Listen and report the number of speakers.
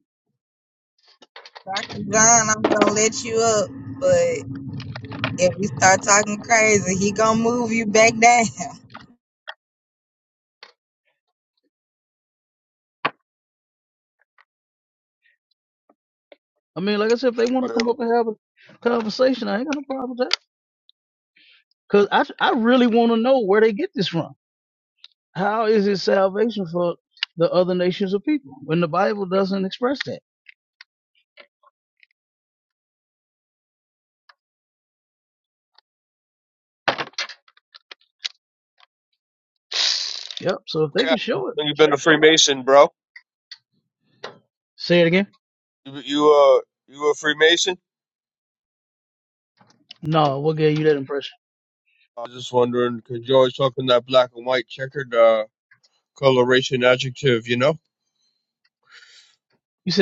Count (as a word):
three